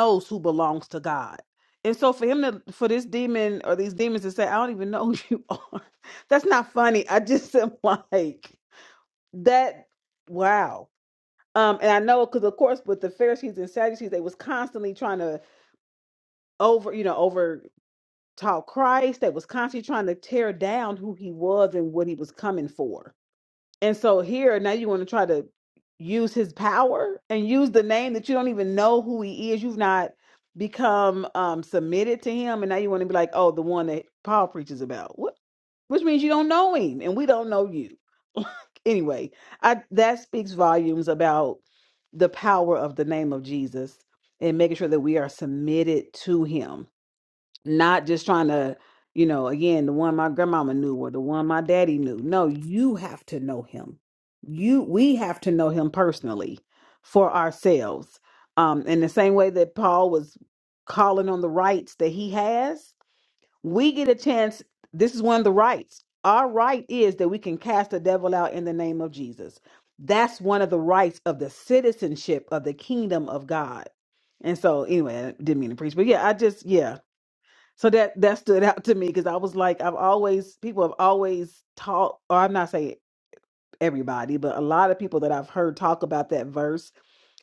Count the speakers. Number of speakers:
1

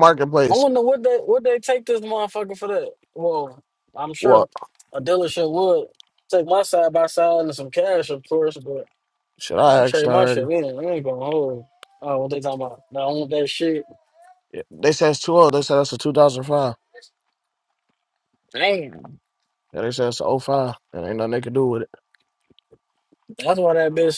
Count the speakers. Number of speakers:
2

